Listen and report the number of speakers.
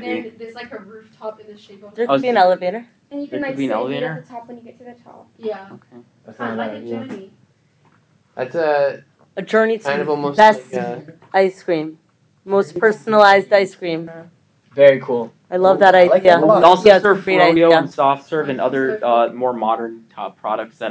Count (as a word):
five